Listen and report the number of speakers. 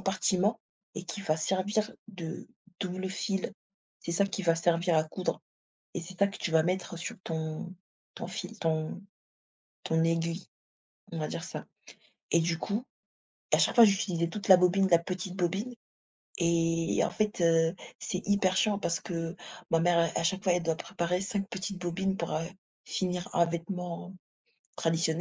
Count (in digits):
1